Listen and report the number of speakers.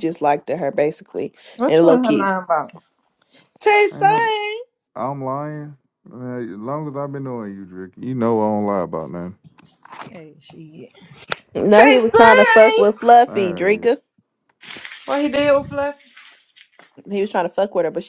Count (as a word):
three